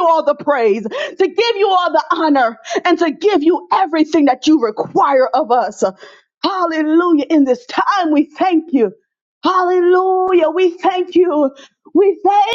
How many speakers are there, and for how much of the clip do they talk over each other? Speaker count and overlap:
1, no overlap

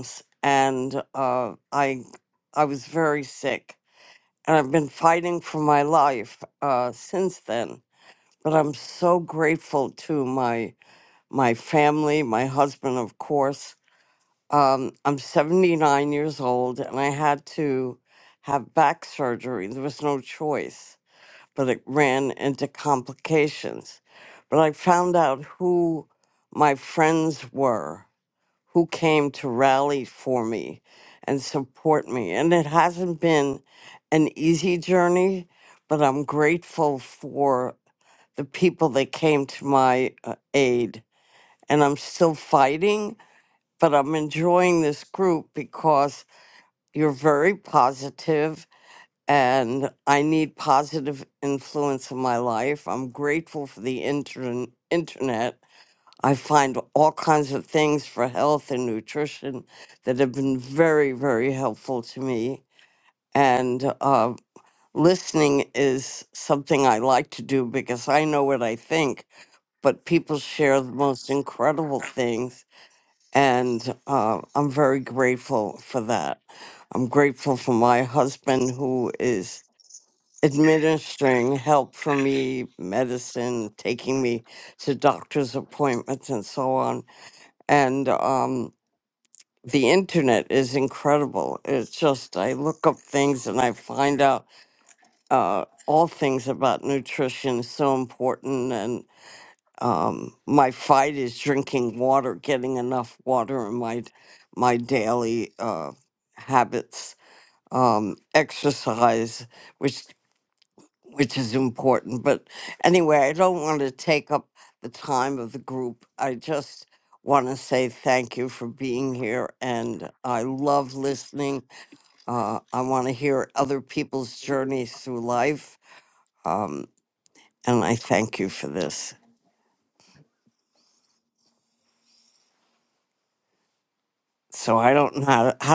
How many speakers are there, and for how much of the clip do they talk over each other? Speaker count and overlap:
1, no overlap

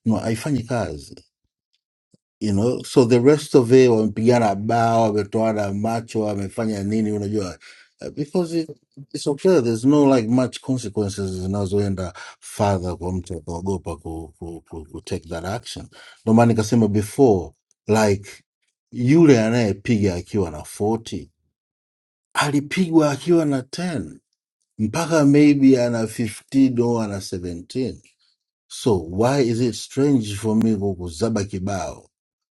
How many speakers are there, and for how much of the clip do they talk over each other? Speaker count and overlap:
1, no overlap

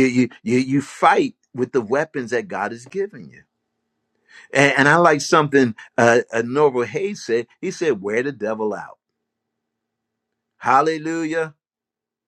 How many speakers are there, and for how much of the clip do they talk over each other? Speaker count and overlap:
1, no overlap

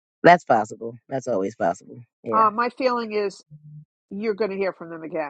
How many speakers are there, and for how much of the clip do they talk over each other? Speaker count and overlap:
2, about 3%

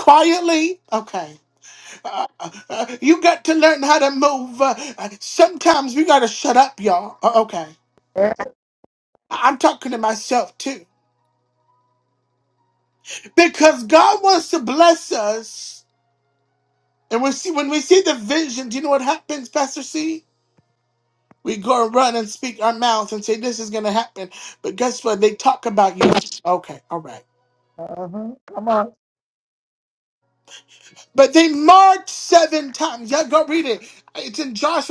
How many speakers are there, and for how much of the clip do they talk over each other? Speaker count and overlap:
2, no overlap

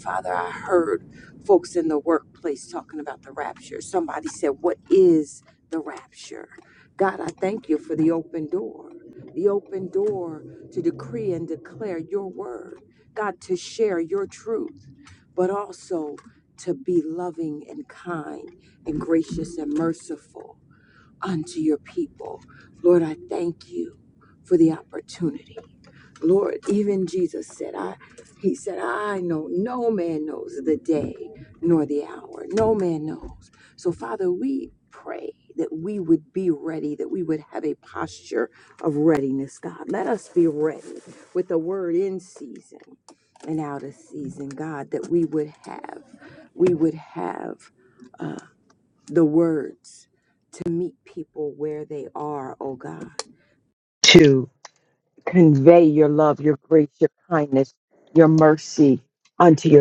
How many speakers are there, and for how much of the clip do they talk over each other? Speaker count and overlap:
1, no overlap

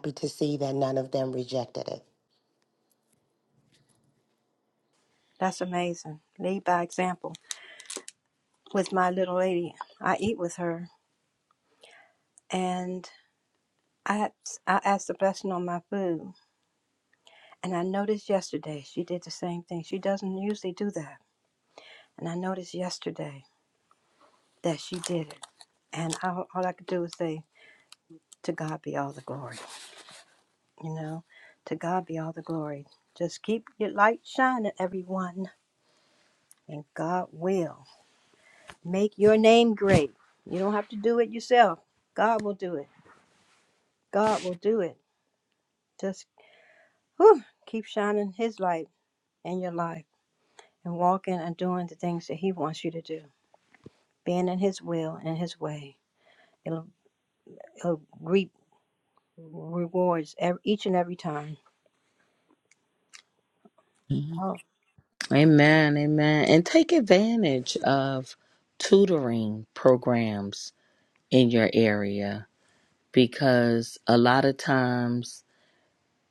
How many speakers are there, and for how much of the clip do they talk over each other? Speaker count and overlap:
3, under 1%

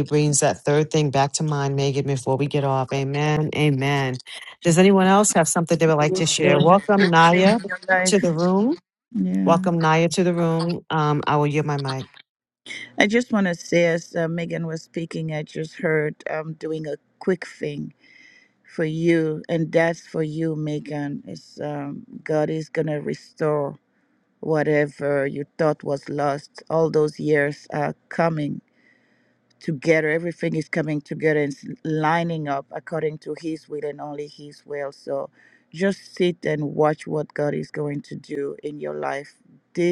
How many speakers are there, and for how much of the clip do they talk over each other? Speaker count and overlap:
2, about 5%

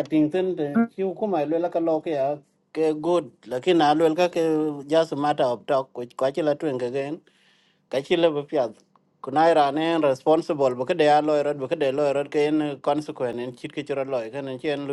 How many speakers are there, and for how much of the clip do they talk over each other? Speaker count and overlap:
1, no overlap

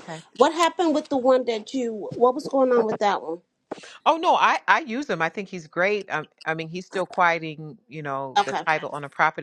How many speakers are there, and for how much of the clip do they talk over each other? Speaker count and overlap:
2, about 5%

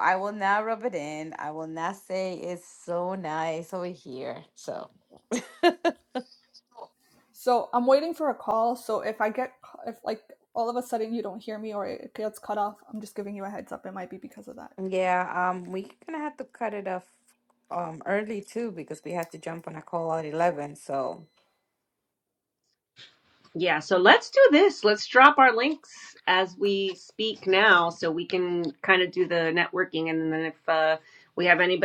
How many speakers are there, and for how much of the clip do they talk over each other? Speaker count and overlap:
3, no overlap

